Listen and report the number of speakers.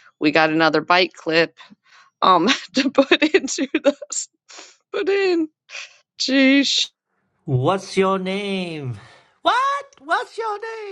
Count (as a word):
two